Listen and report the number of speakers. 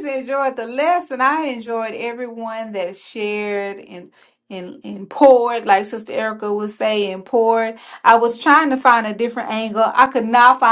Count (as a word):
one